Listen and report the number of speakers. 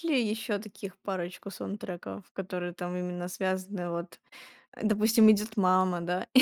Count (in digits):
1